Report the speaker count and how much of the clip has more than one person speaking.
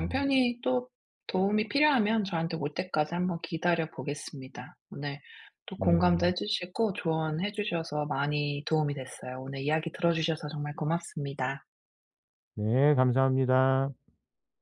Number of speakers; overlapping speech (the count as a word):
two, about 3%